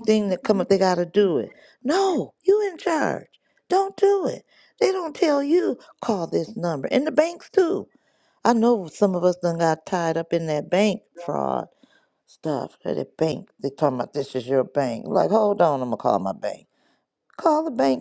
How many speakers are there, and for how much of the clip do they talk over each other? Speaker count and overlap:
one, no overlap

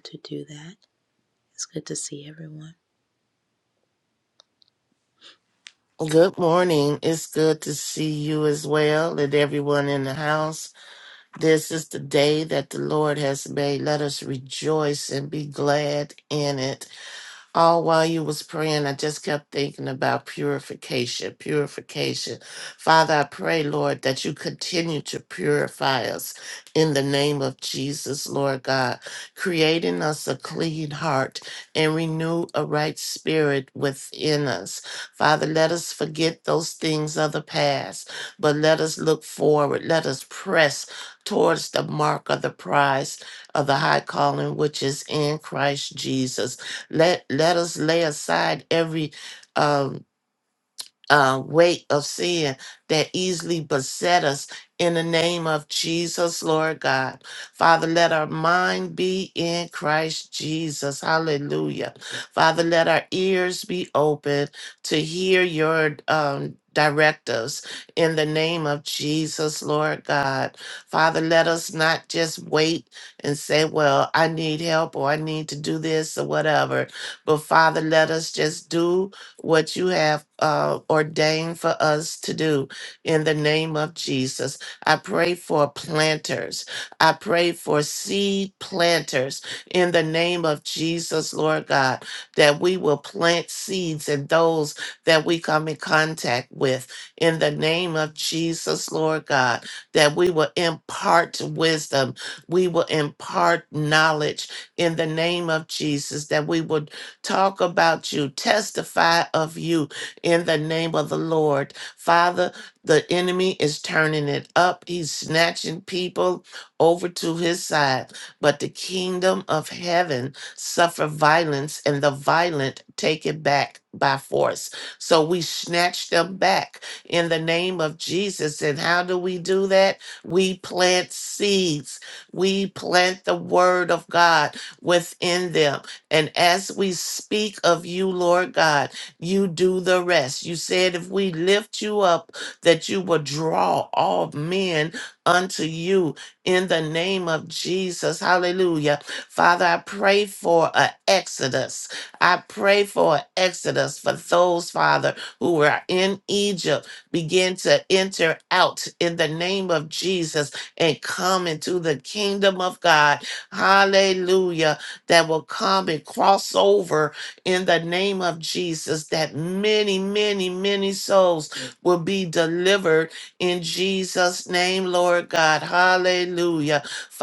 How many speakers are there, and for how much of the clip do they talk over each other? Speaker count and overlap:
two, no overlap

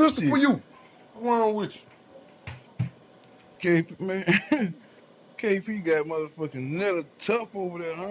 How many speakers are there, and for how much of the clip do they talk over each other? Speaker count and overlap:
two, about 5%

